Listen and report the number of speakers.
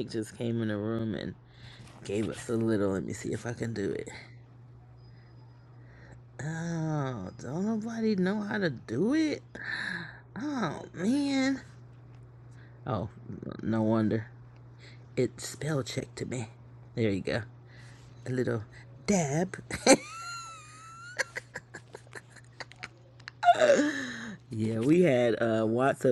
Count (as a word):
one